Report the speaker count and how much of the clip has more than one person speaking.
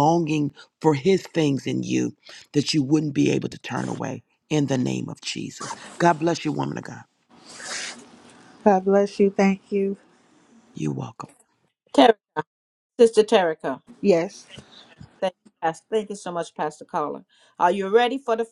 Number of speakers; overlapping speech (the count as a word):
three, no overlap